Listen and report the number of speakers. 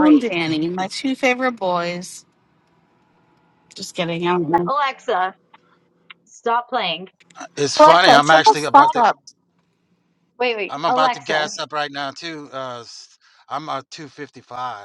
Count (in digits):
3